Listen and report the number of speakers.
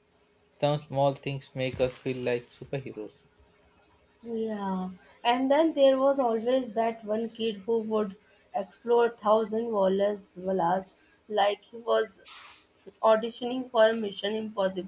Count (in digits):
2